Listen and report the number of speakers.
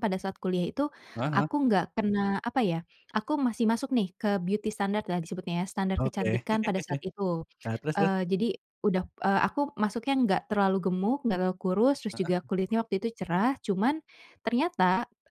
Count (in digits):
2